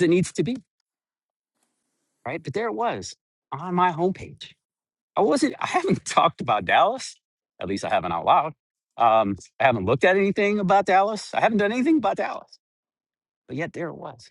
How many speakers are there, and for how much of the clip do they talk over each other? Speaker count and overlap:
1, no overlap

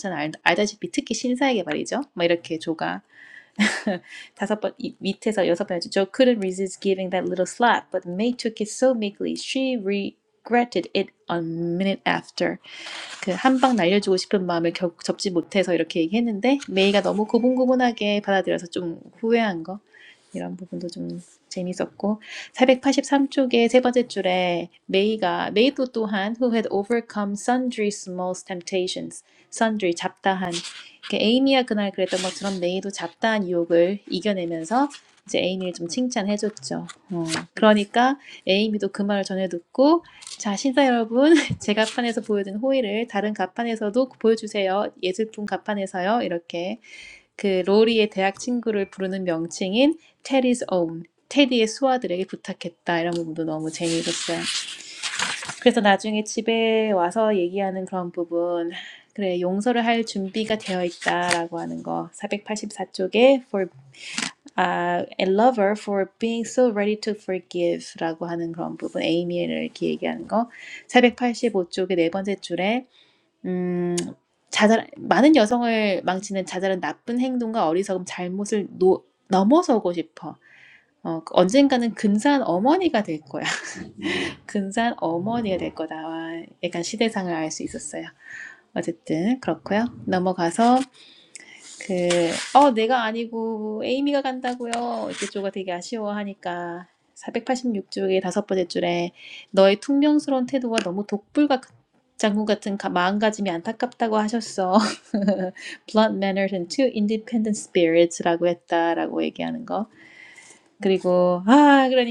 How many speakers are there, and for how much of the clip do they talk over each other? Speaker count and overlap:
1, no overlap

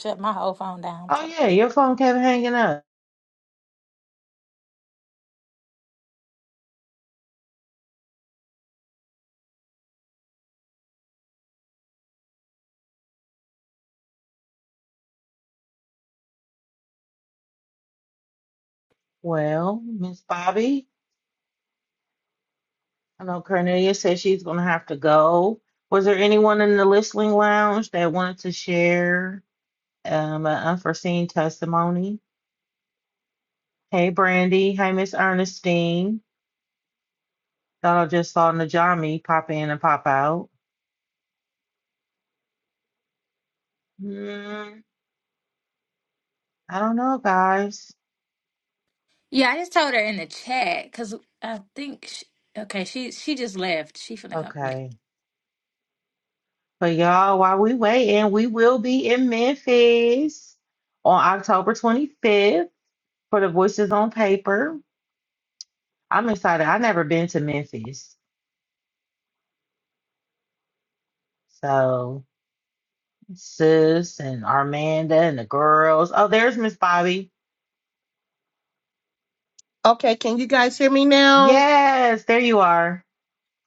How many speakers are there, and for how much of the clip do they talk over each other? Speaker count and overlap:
3, about 1%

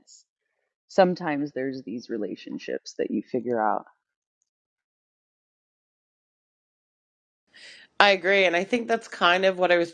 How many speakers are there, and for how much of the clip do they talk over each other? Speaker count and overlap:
2, no overlap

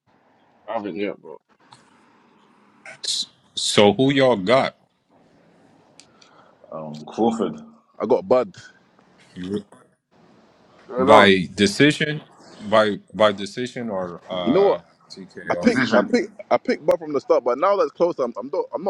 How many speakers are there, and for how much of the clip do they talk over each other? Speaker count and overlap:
4, about 7%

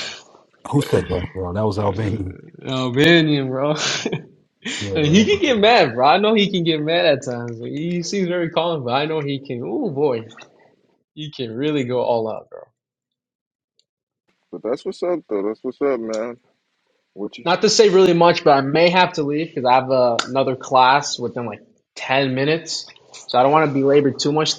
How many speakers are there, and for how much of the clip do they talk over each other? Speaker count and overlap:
3, about 3%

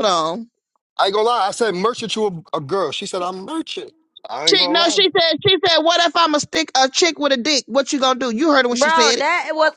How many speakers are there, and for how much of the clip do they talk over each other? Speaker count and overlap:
3, about 12%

